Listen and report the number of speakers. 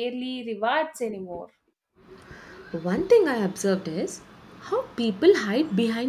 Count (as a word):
two